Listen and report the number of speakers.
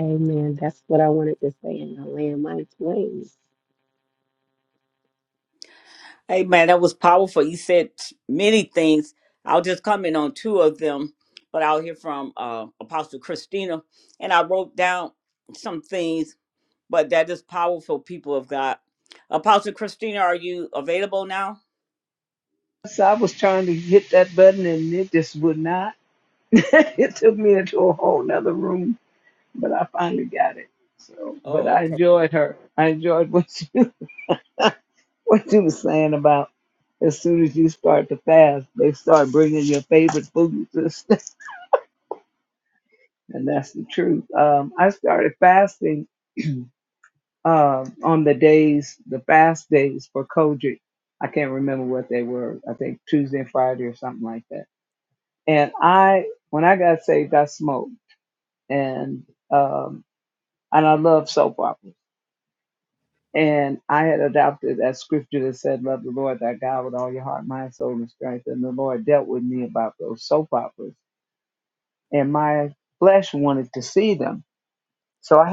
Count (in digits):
3